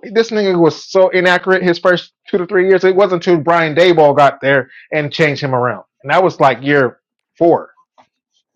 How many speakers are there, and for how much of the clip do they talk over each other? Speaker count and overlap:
one, no overlap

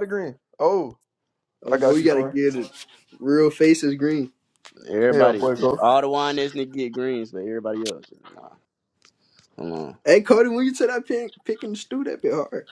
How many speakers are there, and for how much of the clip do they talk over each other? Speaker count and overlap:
three, about 11%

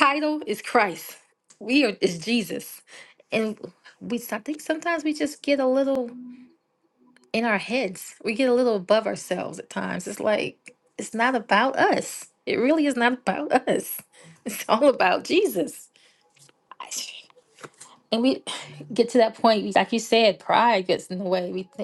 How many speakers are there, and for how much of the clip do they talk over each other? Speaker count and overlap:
one, no overlap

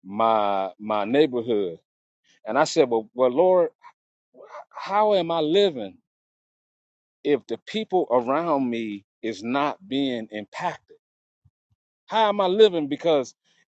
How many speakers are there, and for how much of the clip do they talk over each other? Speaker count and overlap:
one, no overlap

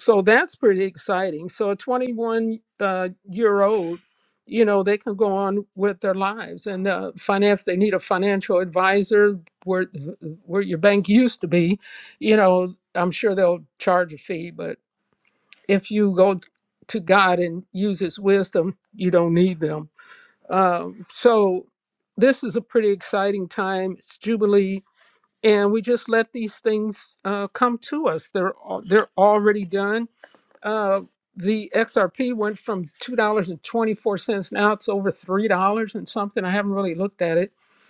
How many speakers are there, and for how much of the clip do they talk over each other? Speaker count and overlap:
one, no overlap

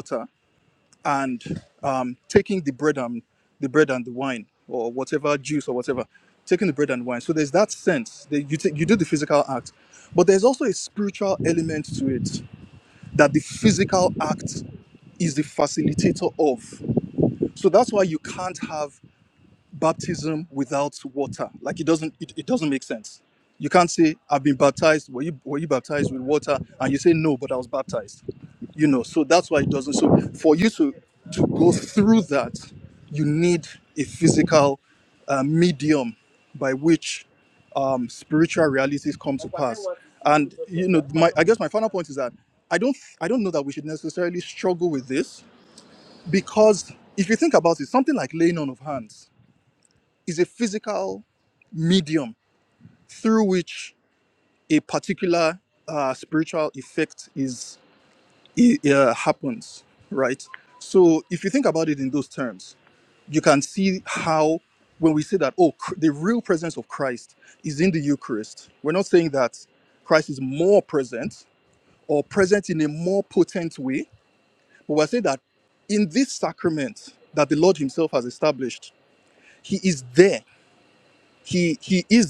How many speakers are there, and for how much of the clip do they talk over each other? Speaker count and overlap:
one, no overlap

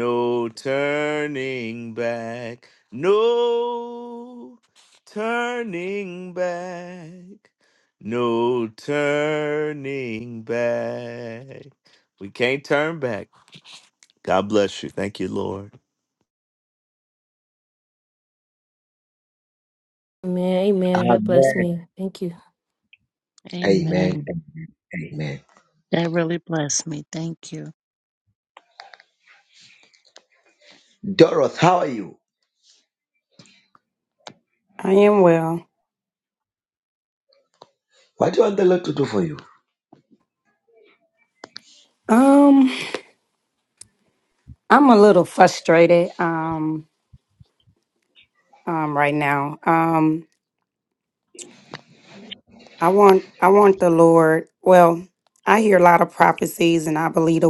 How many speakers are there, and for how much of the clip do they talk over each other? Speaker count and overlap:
five, about 2%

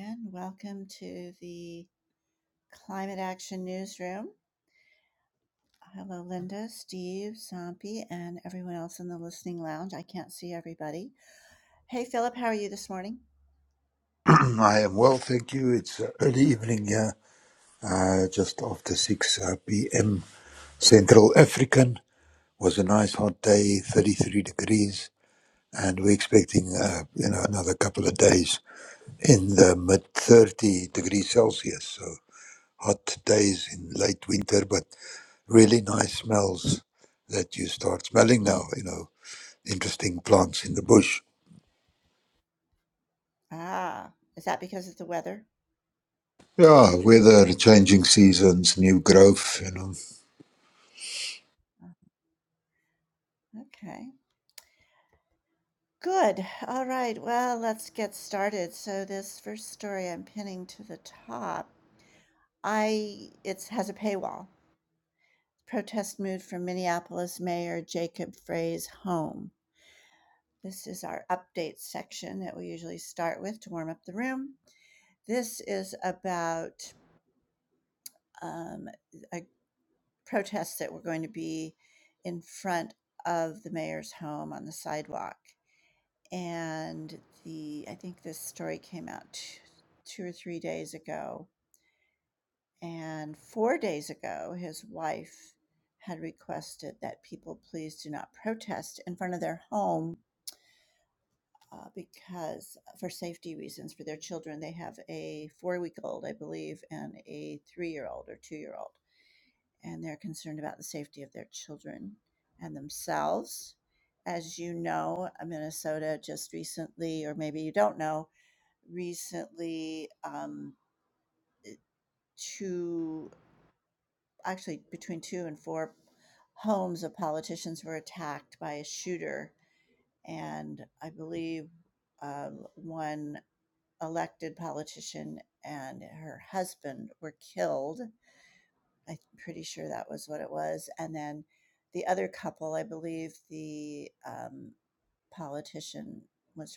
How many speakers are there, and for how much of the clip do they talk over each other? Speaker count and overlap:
two, no overlap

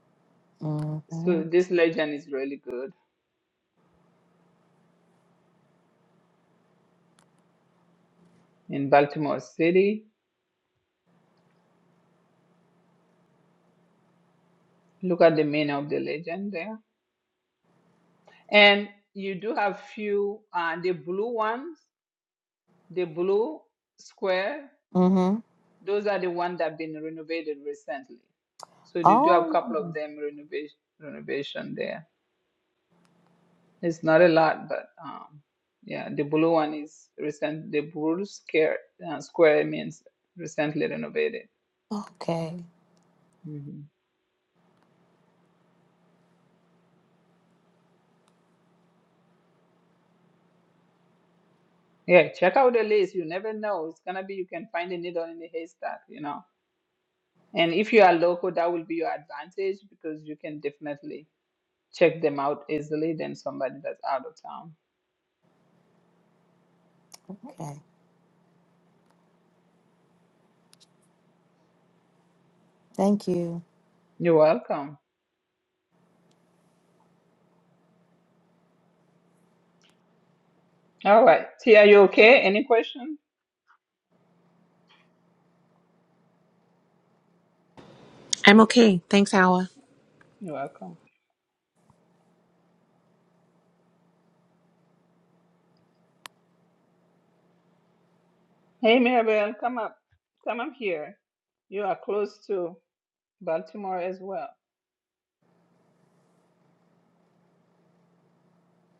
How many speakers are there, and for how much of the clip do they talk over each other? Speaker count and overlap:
three, about 1%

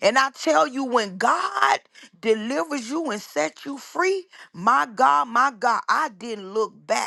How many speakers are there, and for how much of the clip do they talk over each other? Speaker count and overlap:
one, no overlap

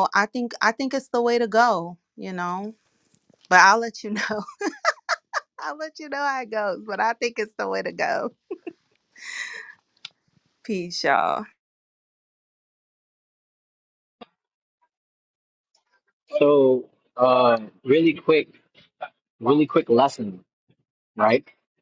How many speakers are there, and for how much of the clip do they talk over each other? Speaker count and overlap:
two, no overlap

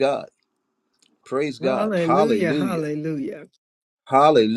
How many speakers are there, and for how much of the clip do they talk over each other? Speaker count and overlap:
two, about 27%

